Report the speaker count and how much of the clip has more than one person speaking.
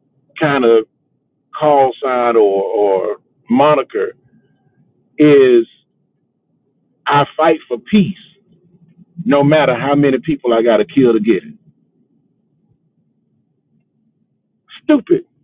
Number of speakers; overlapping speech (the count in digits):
1, no overlap